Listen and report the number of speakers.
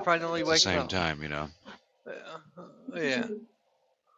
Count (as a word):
two